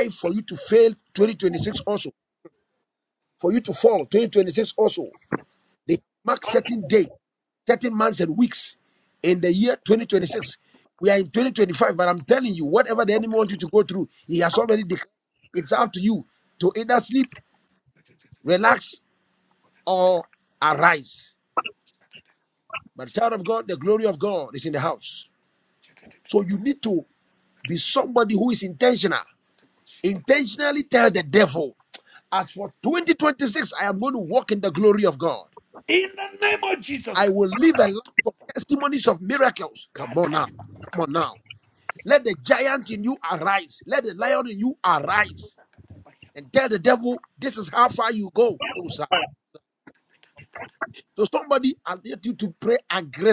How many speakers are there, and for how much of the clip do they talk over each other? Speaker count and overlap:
two, under 1%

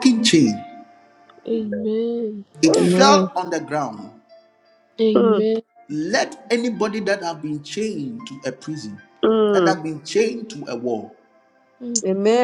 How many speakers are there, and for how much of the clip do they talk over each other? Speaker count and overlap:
three, about 9%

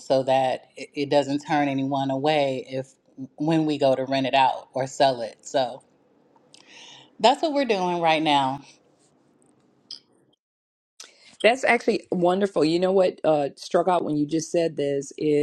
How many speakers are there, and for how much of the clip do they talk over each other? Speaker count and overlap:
two, no overlap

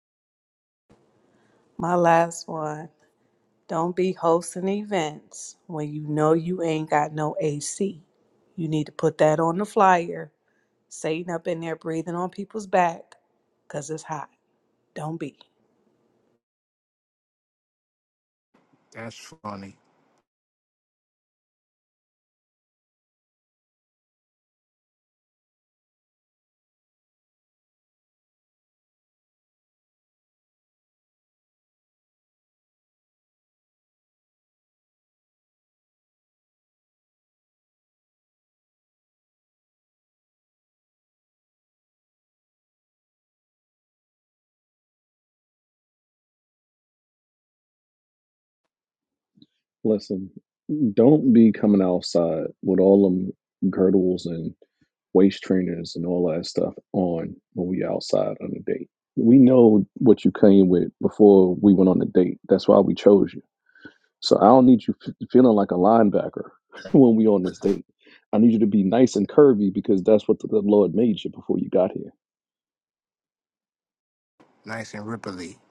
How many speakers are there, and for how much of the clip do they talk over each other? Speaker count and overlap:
three, no overlap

